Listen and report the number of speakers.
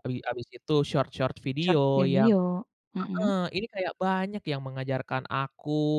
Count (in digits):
2